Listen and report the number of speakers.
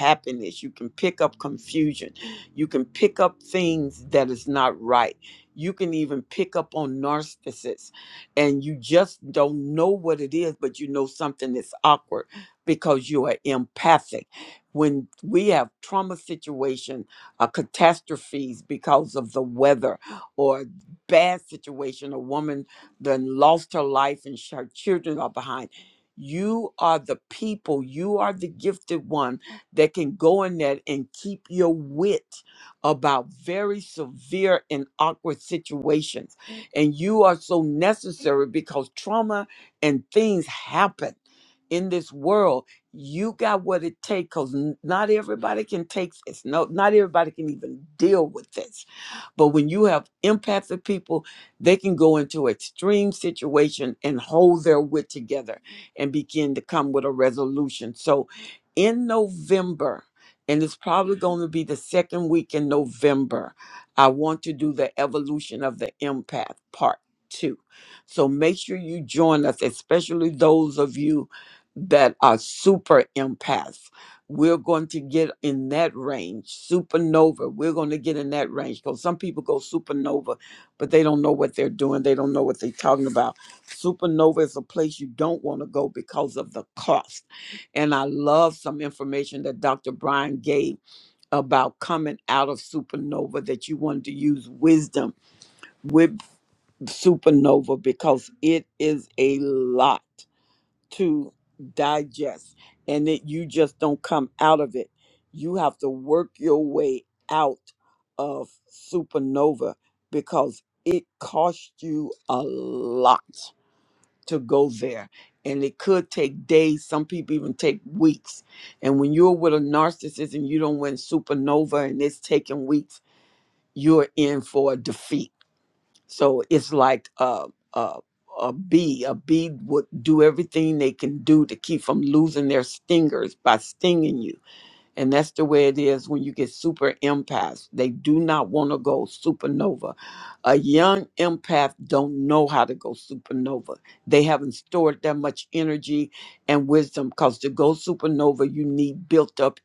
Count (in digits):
1